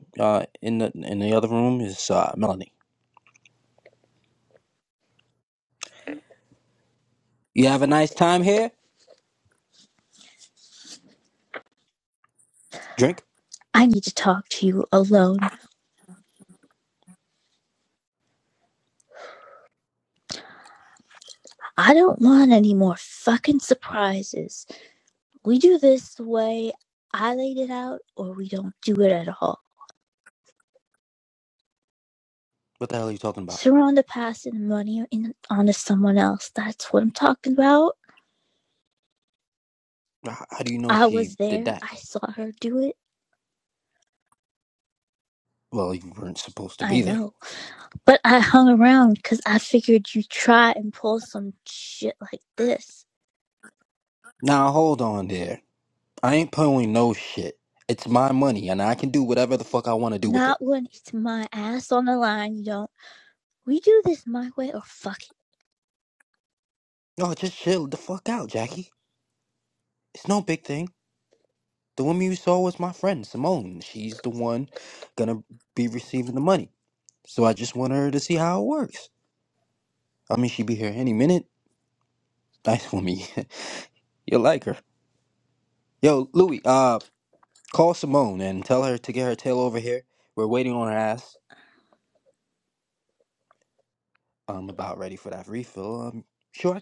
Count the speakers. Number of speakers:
2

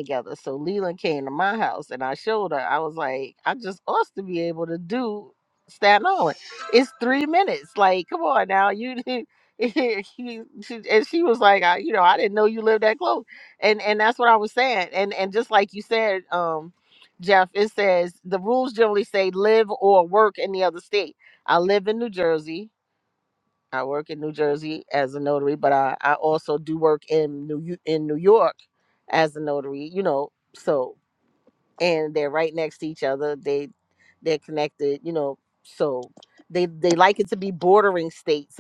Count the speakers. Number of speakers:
1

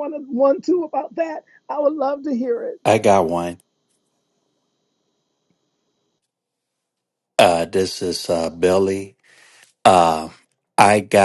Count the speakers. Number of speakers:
2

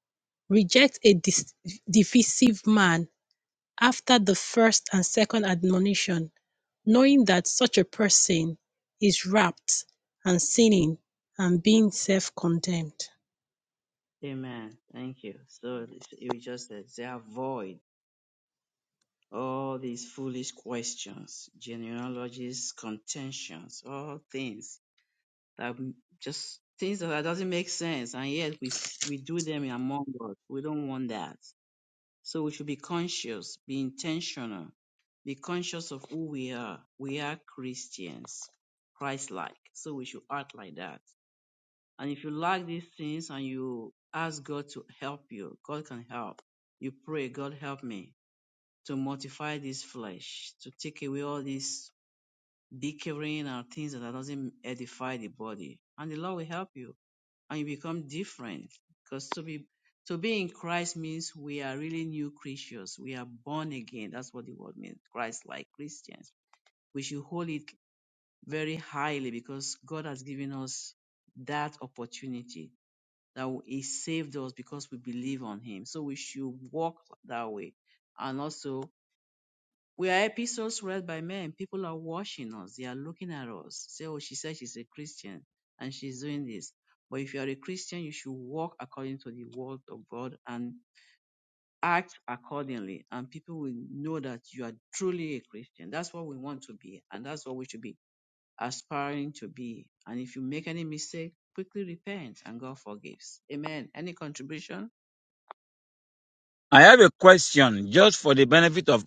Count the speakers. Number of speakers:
3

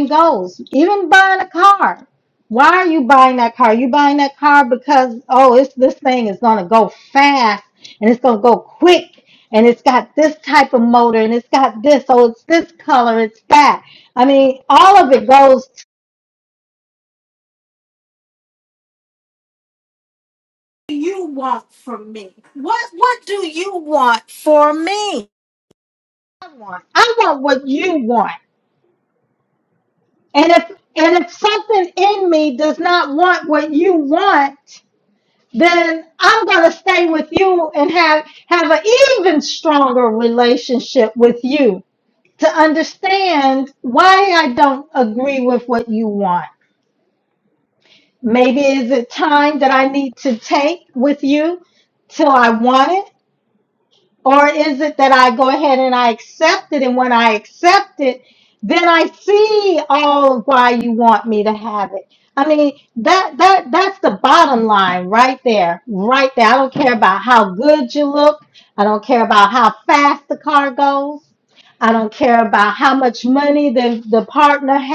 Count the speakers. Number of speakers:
1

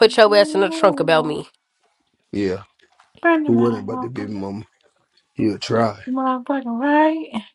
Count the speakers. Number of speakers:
3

